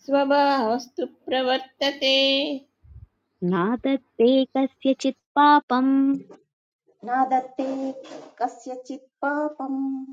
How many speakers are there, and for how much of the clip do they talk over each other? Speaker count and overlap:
3, no overlap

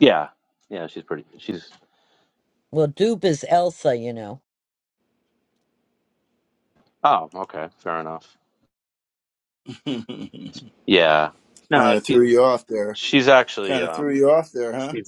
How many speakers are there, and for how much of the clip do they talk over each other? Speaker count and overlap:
3, about 5%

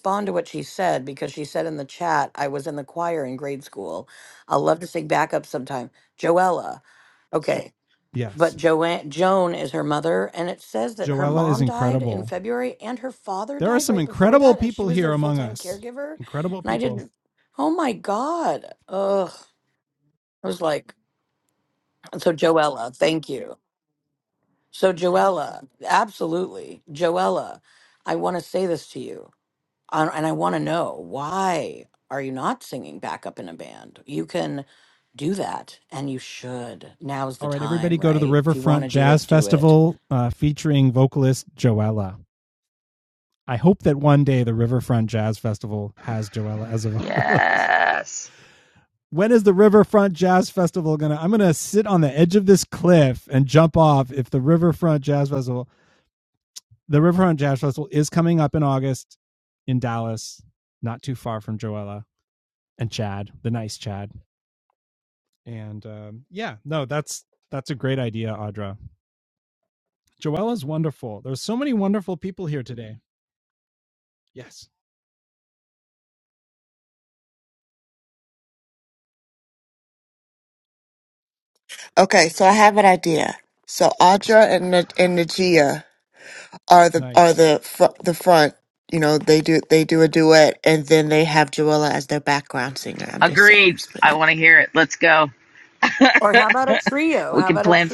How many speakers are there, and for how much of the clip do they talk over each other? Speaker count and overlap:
4, about 8%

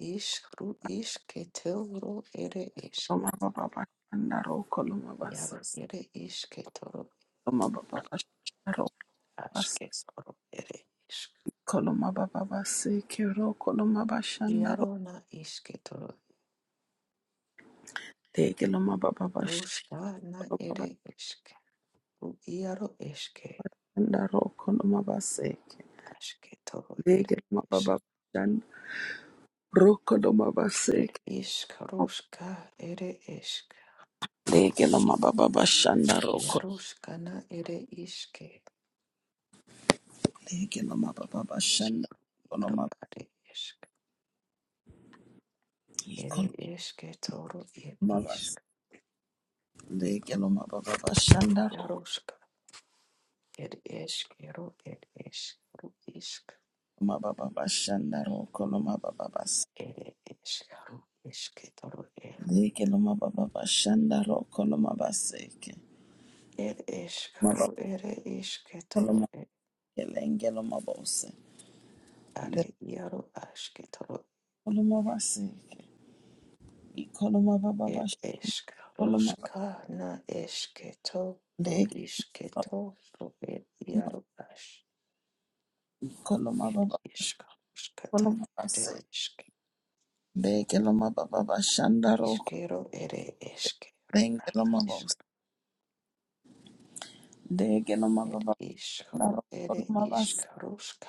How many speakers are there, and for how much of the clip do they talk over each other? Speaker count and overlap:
2, about 8%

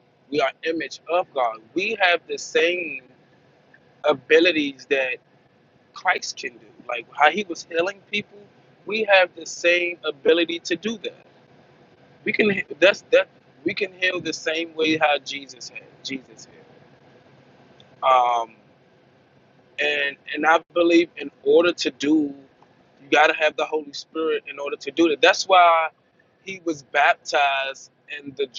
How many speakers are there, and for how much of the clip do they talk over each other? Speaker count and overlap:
1, no overlap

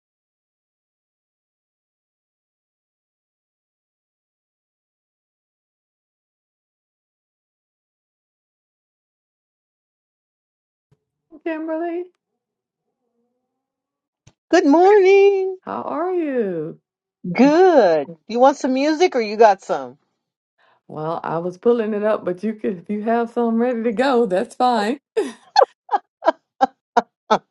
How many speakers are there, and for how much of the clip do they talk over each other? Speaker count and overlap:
2, no overlap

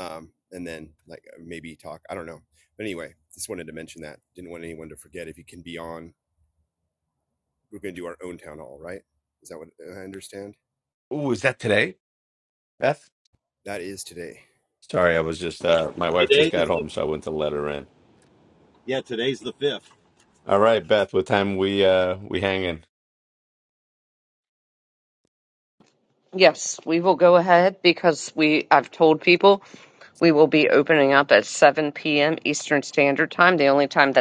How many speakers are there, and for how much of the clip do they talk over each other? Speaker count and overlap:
4, about 2%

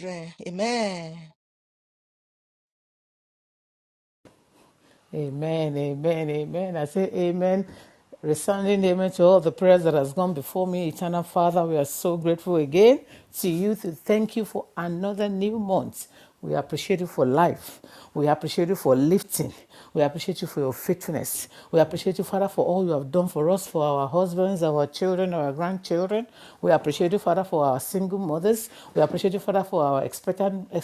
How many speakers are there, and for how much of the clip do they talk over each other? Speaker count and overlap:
2, no overlap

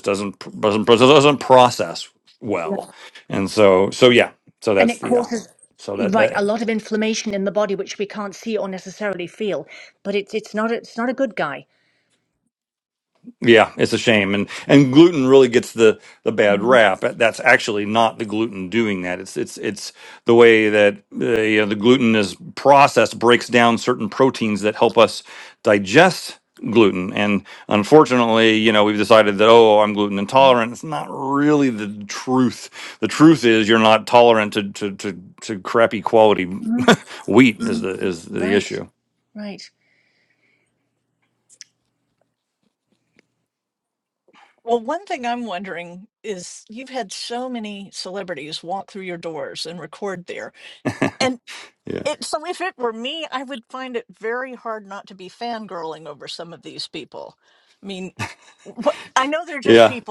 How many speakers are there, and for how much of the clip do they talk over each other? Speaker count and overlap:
3, about 3%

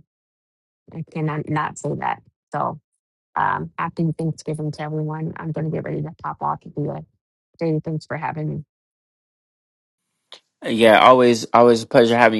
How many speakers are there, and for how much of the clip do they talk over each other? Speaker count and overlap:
2, no overlap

